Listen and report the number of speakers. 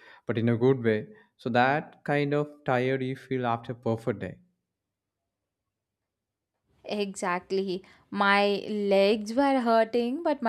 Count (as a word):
two